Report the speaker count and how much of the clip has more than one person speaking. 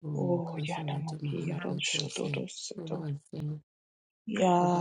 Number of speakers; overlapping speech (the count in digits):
2, about 53%